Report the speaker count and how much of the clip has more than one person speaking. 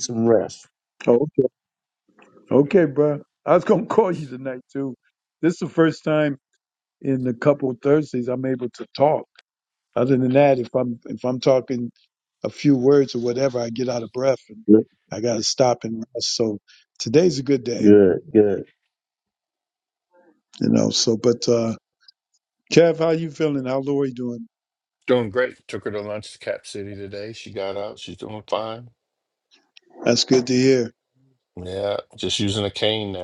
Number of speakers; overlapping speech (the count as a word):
three, under 1%